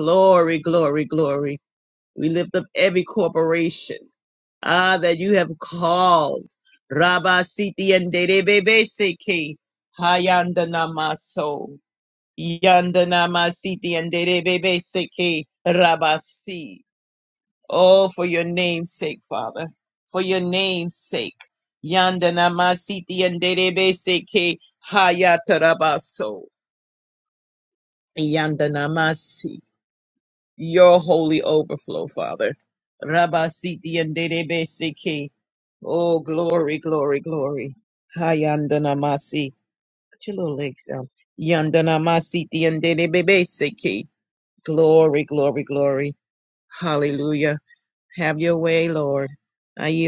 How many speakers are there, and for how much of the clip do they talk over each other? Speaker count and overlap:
1, no overlap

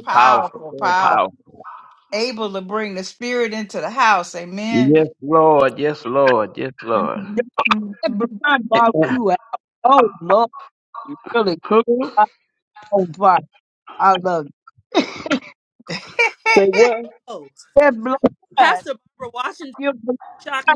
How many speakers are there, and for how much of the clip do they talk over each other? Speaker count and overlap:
4, about 11%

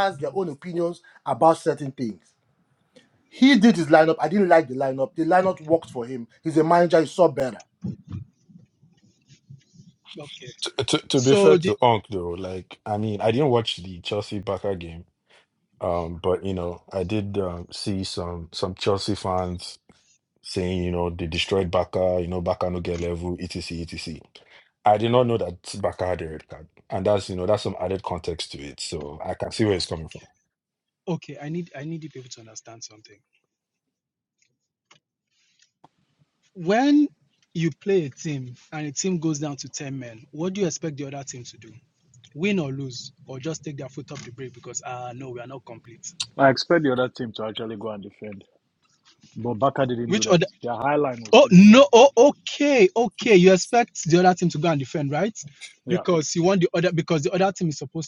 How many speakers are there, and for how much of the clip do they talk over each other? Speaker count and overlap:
4, about 3%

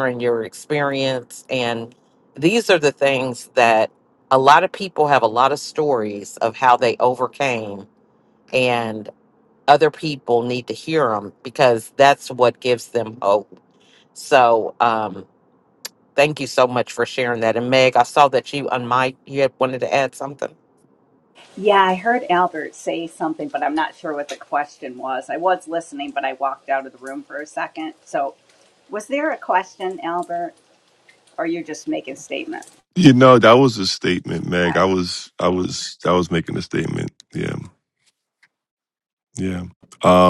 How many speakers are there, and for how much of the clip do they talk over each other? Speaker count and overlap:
3, about 1%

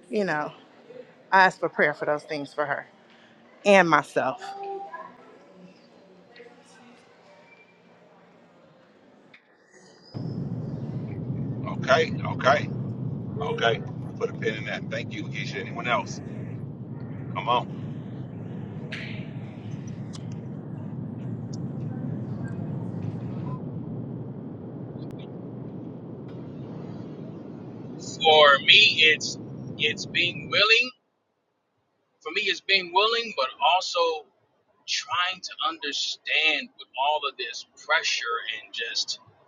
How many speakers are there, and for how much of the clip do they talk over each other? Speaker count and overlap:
3, no overlap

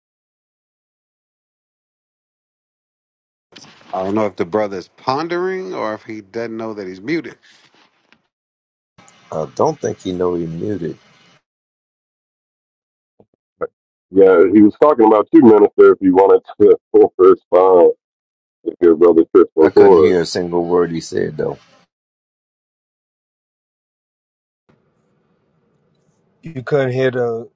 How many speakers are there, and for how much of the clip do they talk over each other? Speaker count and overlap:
4, about 2%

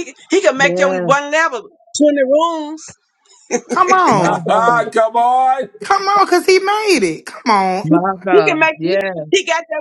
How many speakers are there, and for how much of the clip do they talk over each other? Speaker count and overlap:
4, about 20%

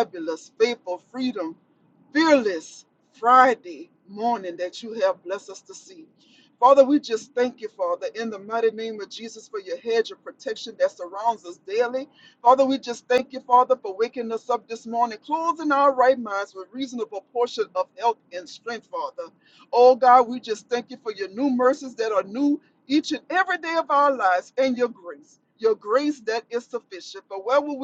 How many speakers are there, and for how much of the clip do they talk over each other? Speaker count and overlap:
1, no overlap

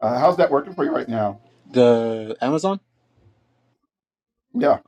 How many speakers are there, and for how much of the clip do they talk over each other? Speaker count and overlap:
2, no overlap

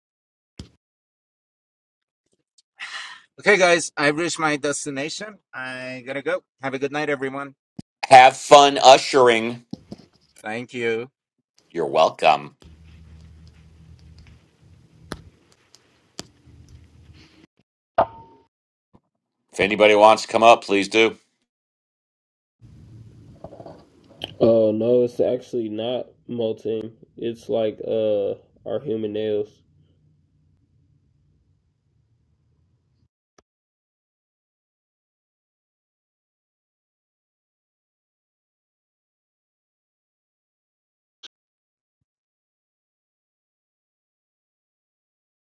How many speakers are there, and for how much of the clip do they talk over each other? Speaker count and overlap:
3, no overlap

